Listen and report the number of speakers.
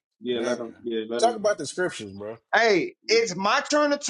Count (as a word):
three